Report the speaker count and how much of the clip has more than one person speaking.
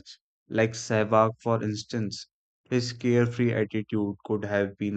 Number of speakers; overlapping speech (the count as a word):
one, no overlap